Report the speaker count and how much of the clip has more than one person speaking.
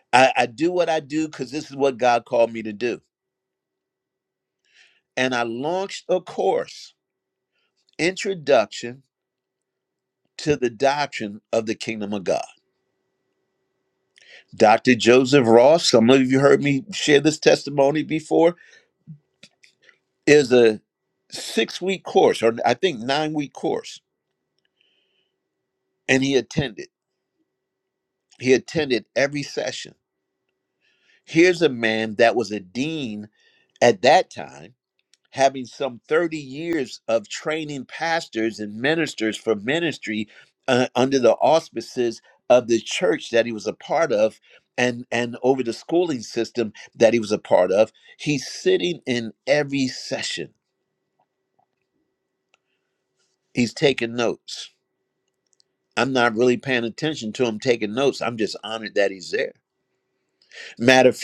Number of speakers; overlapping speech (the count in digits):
1, no overlap